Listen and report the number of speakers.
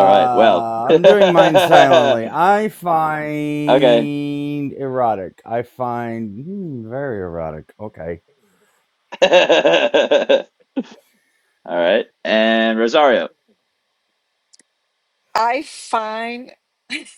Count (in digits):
3